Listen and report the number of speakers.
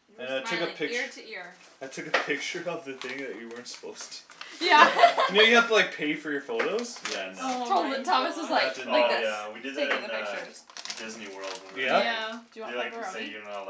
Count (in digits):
4